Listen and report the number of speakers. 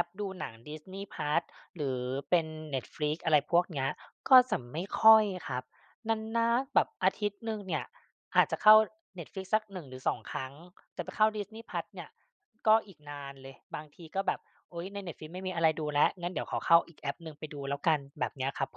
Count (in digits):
1